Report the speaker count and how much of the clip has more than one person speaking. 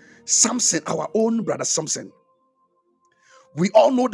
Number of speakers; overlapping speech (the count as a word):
one, no overlap